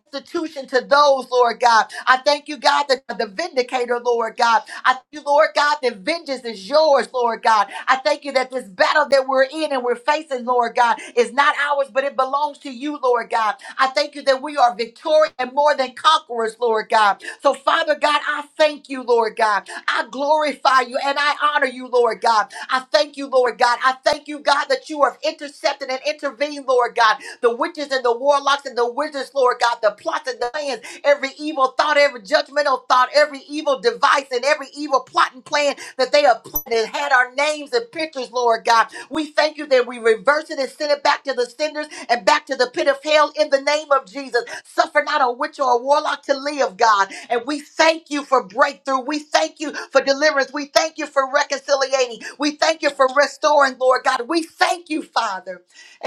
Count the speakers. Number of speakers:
1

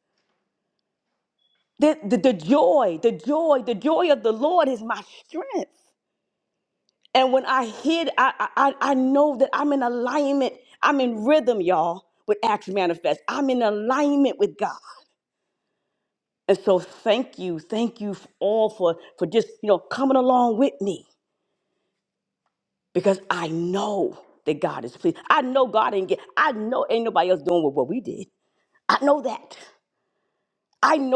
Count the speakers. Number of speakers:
1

